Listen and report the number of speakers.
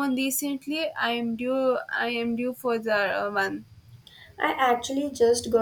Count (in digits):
2